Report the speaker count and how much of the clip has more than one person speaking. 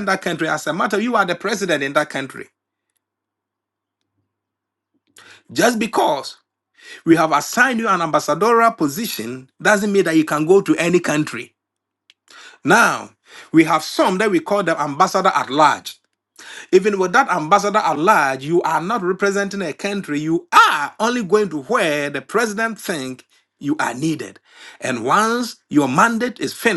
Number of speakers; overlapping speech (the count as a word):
one, no overlap